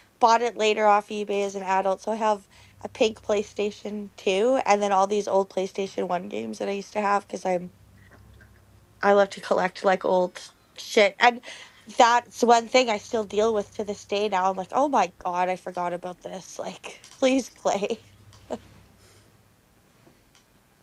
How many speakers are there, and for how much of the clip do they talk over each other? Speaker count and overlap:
1, no overlap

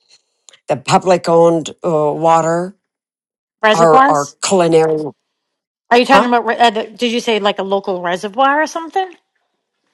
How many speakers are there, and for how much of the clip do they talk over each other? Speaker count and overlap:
2, about 6%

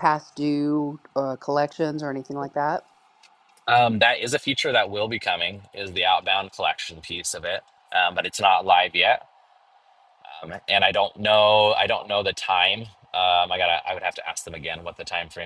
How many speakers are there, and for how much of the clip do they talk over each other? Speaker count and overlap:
2, no overlap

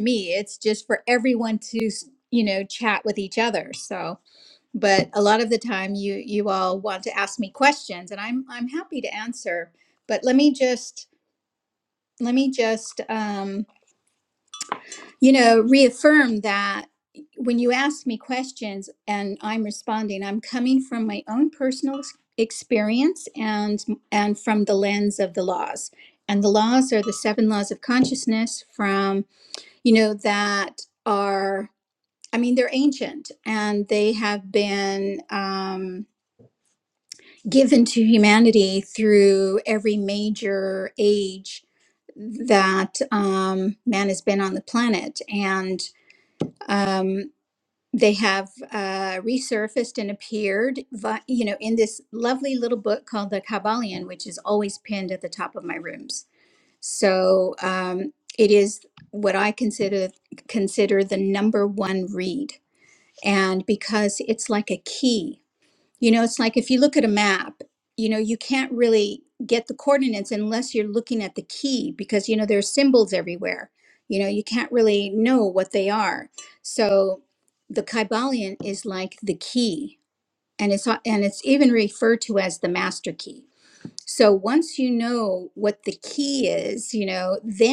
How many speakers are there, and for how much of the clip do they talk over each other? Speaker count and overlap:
1, no overlap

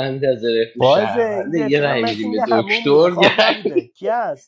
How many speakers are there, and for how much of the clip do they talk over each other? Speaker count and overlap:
2, about 59%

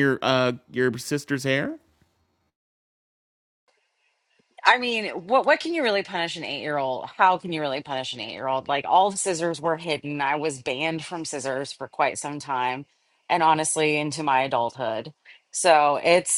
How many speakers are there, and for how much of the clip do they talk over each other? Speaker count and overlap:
2, no overlap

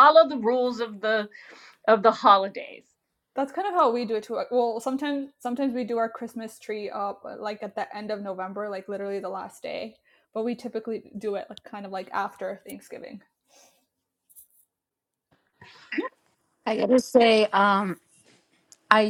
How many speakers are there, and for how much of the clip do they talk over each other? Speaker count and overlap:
3, no overlap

